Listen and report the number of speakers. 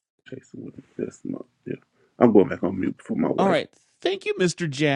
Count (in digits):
2